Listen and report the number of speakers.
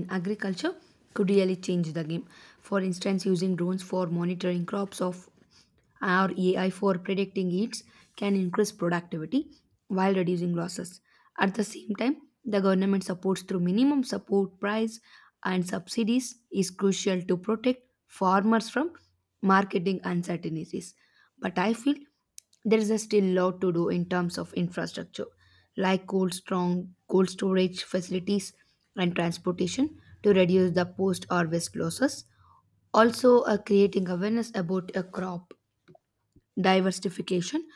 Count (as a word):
one